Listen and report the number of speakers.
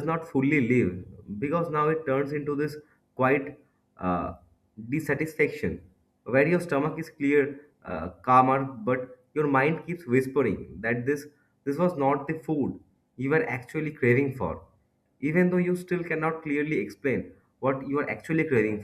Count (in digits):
1